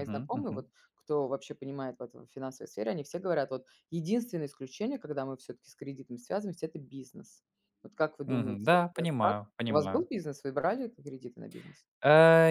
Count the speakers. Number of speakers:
two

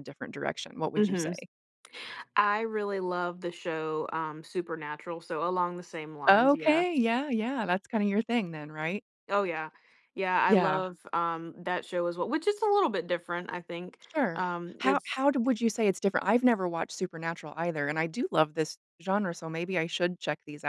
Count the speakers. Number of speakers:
two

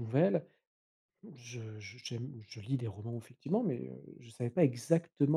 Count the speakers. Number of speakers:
one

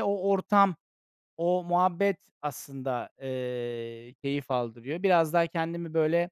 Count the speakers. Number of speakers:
one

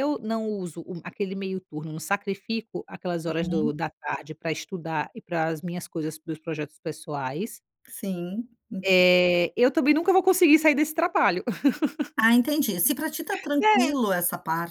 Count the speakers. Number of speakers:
two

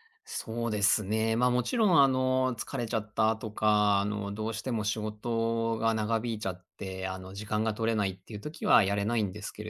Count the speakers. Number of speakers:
one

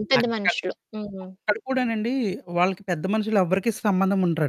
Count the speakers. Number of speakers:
two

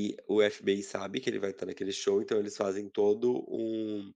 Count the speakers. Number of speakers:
one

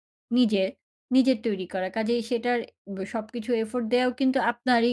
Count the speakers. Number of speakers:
one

